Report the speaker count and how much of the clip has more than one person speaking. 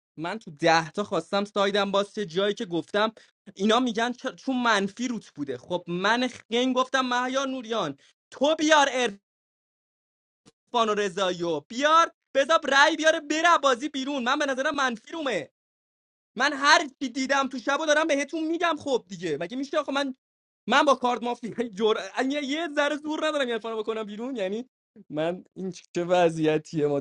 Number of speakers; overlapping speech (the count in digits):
1, no overlap